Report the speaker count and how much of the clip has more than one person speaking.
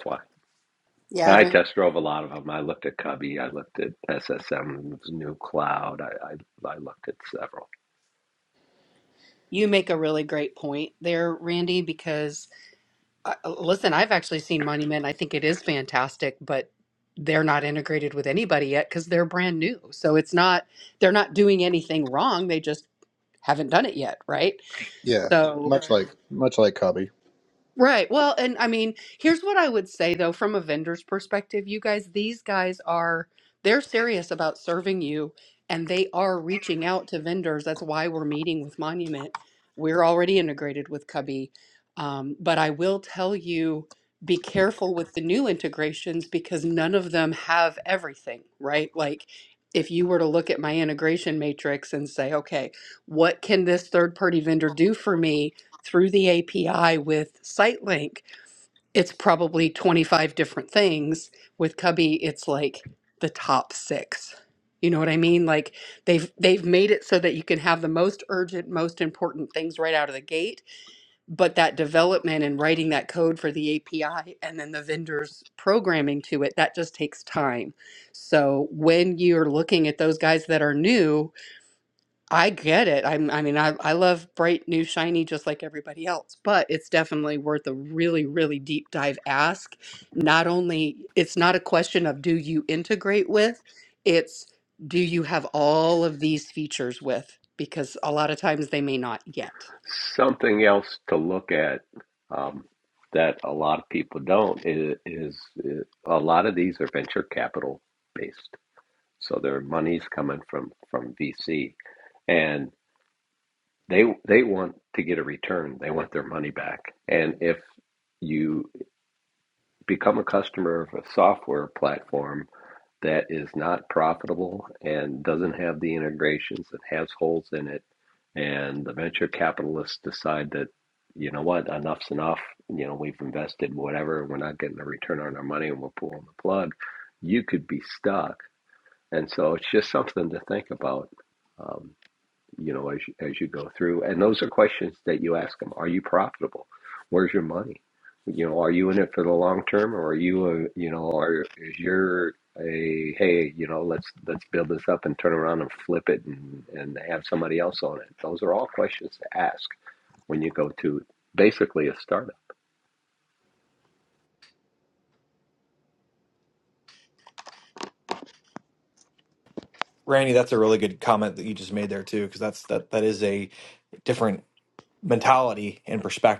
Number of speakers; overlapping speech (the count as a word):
four, under 1%